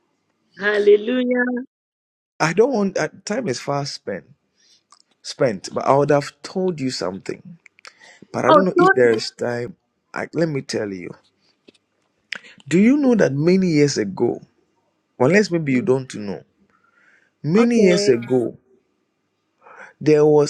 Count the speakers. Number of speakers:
2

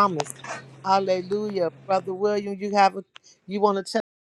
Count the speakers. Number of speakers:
1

